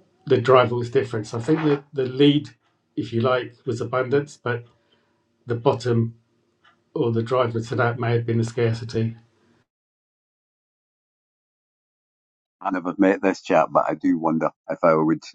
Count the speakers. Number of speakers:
2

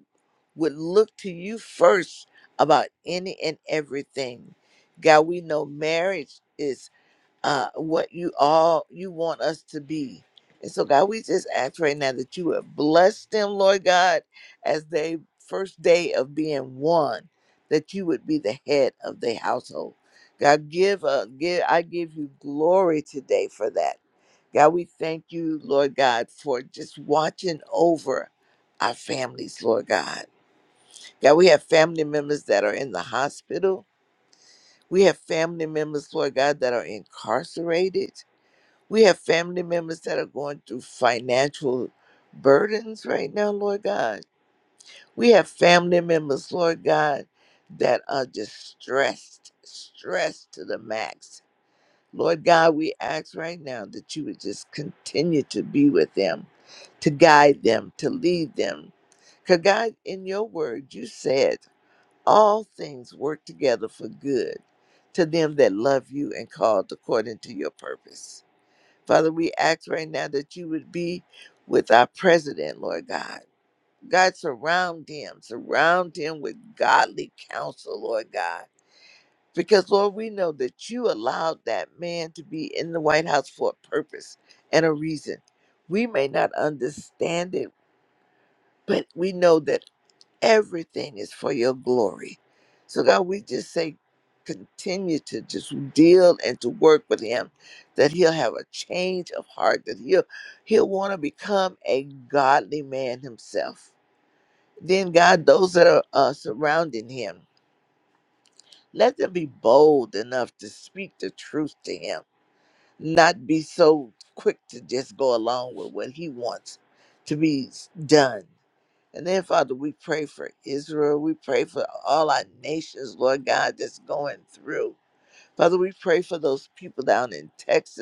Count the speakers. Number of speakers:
1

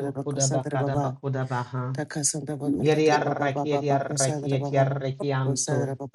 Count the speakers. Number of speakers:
2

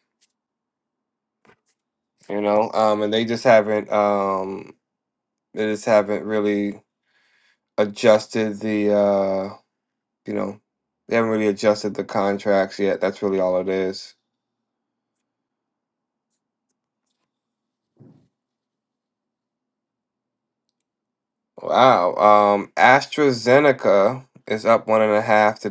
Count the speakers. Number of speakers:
1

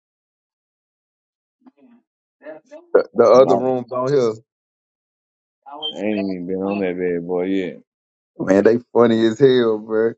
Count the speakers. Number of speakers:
3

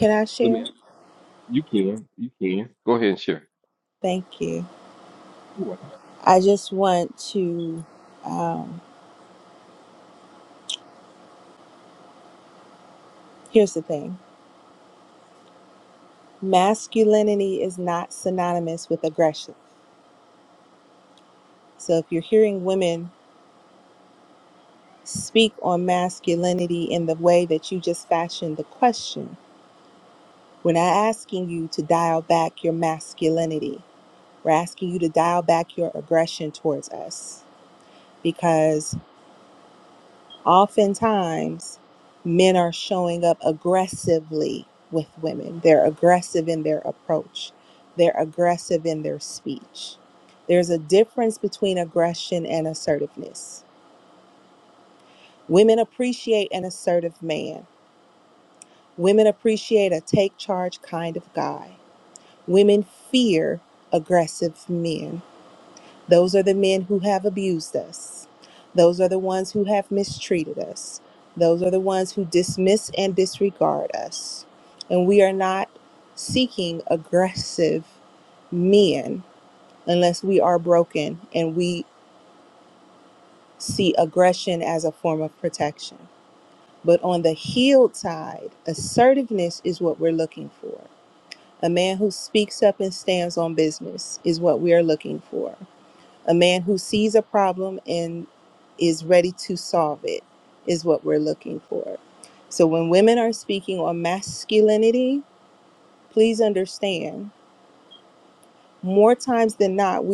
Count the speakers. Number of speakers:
2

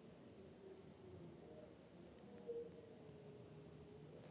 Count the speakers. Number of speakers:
0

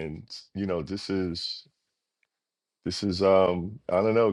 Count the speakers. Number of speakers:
1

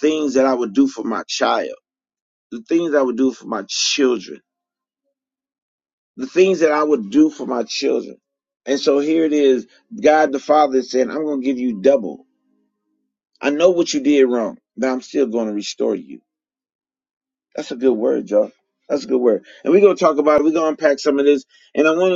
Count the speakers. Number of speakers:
1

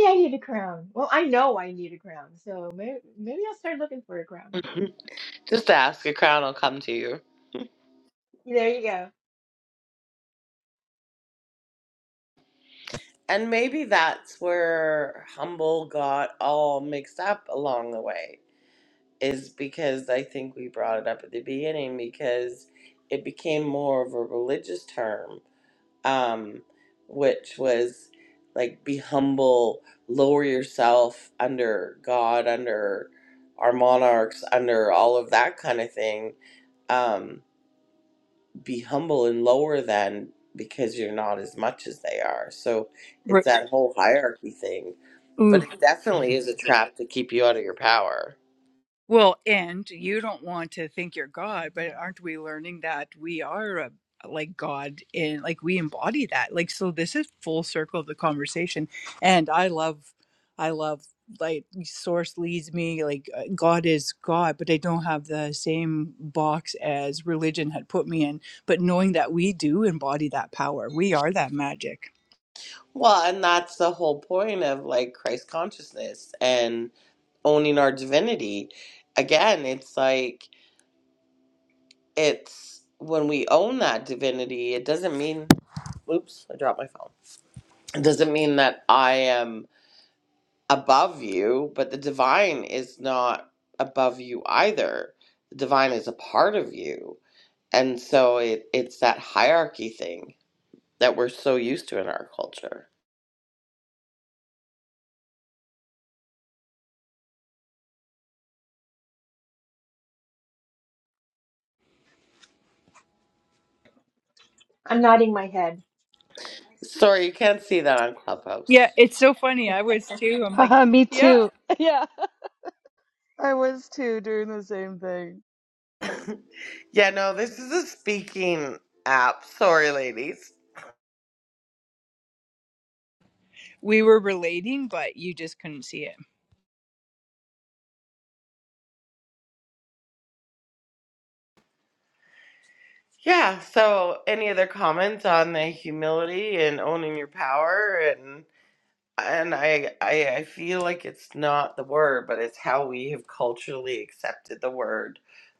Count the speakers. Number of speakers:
4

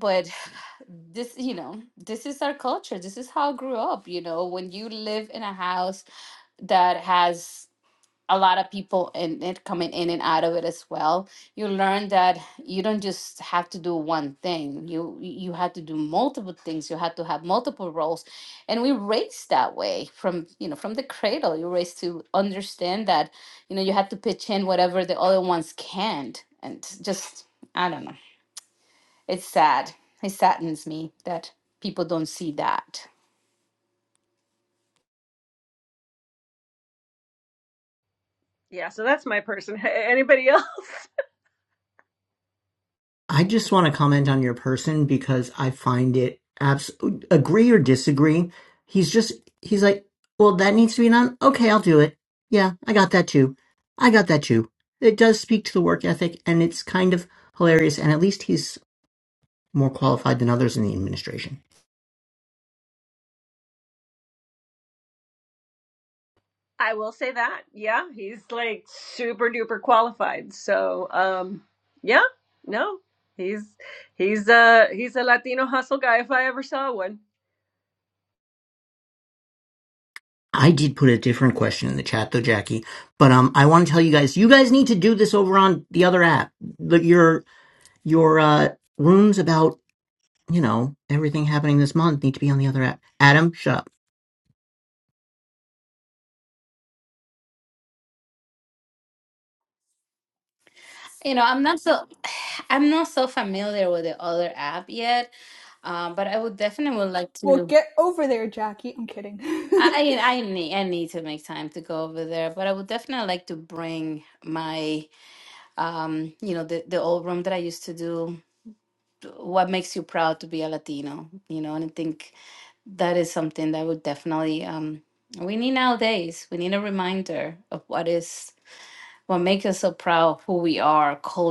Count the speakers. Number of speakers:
4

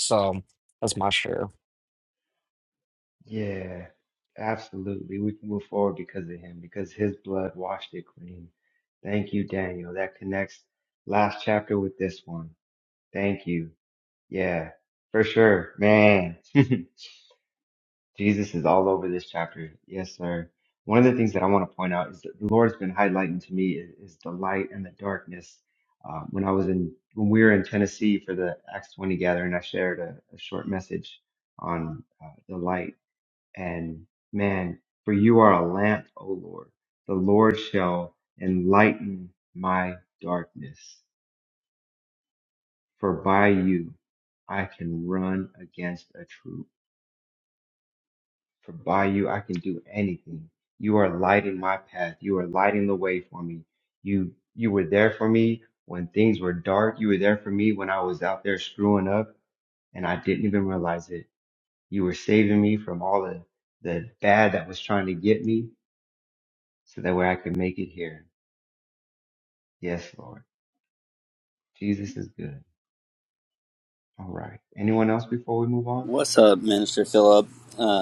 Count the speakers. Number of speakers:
3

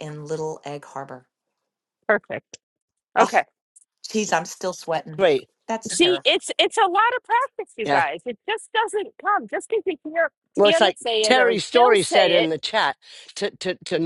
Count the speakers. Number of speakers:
3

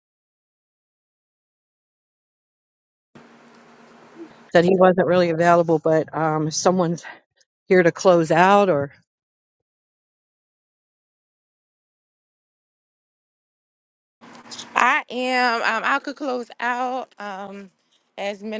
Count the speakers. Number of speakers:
2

